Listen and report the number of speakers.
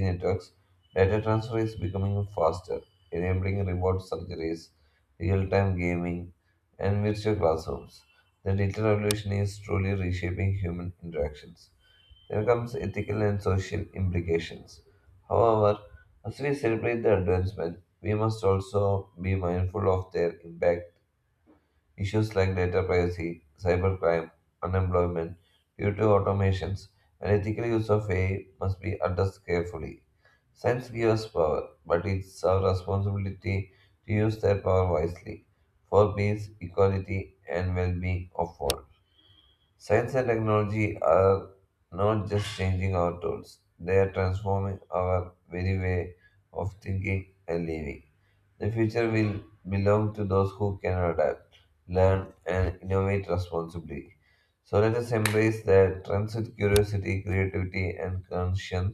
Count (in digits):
1